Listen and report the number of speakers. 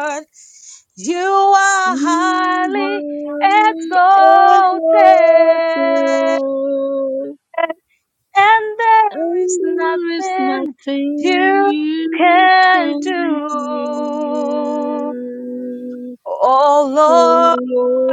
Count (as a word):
two